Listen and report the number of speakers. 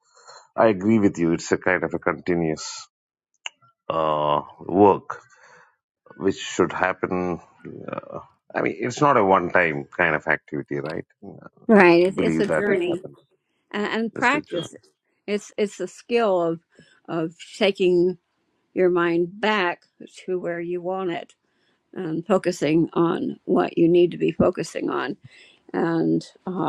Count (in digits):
2